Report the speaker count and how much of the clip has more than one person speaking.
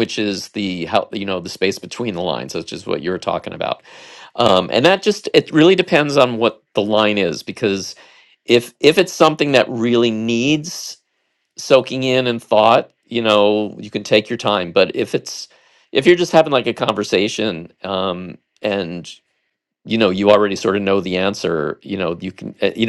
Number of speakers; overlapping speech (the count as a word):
one, no overlap